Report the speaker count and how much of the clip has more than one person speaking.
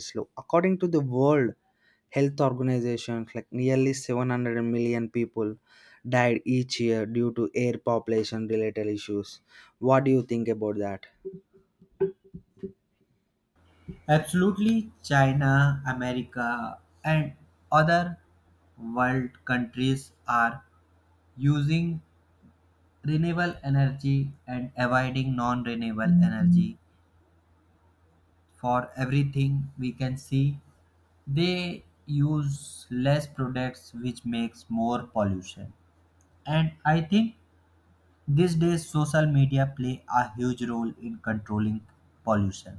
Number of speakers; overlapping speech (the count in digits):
2, no overlap